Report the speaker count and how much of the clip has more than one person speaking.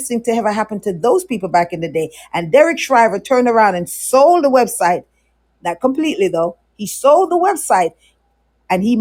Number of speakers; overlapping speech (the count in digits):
1, no overlap